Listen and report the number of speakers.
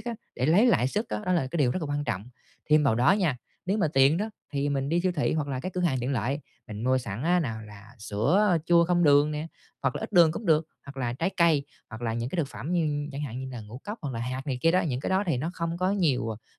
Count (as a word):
one